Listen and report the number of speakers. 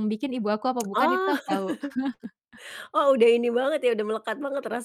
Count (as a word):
two